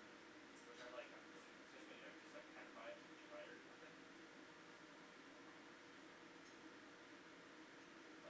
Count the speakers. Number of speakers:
one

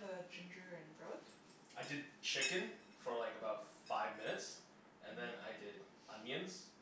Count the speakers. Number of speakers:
two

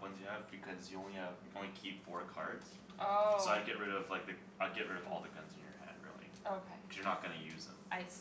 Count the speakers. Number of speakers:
two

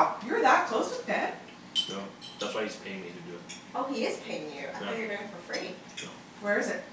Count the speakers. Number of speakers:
three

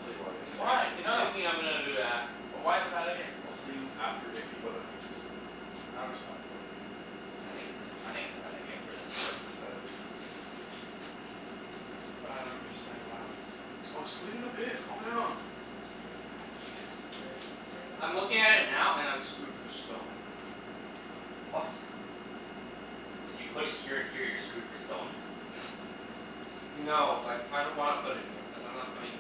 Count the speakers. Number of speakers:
four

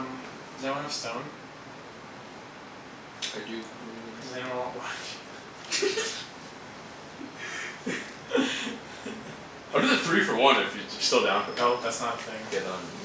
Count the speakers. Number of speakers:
two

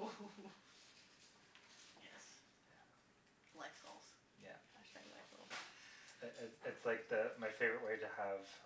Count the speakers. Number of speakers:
two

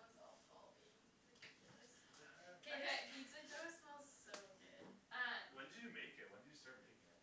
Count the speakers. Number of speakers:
three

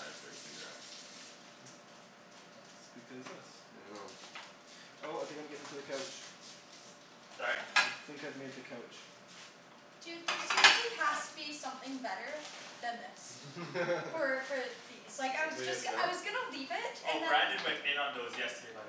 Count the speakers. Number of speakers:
four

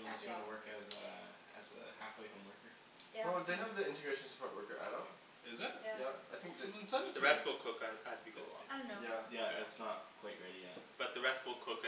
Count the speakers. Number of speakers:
four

